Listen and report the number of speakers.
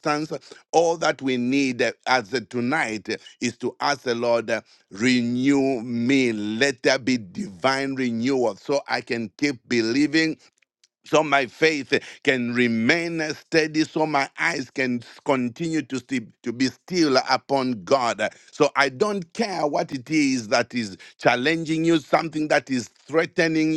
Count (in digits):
1